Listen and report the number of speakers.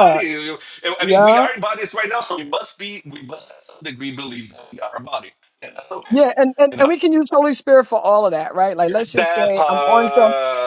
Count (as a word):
two